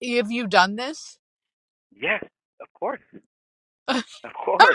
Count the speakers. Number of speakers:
2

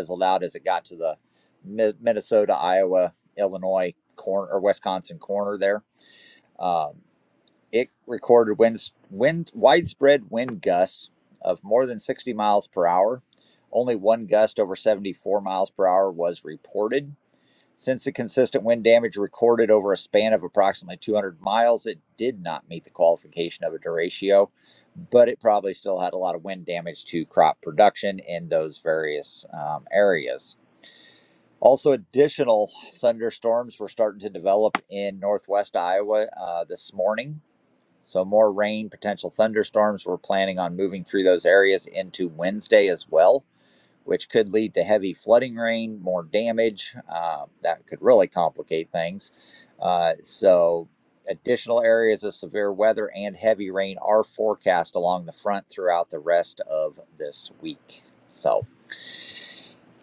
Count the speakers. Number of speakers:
1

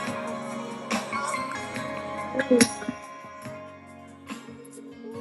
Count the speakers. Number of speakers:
0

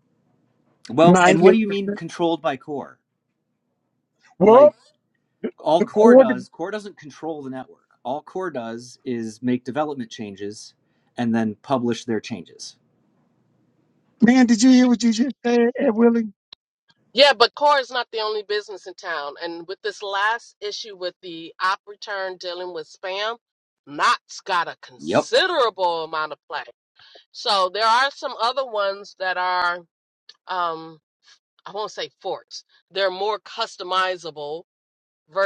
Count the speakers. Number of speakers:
3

